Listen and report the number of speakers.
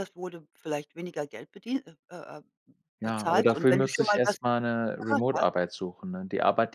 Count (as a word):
two